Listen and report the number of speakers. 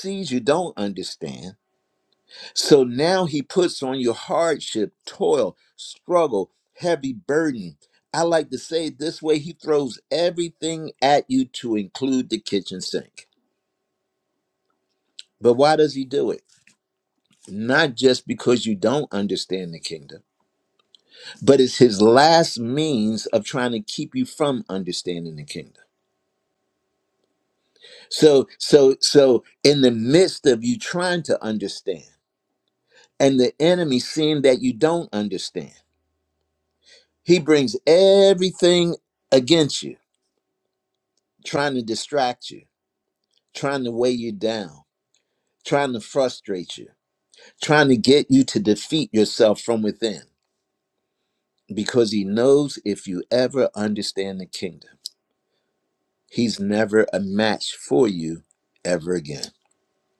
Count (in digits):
1